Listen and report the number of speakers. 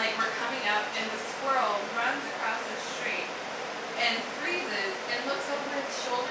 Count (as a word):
one